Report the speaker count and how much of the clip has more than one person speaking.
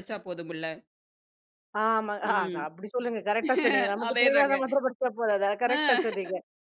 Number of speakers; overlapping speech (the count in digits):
2, about 17%